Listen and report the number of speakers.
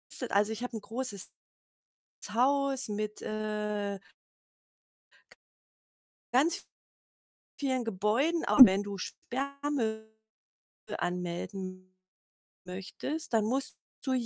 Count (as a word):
one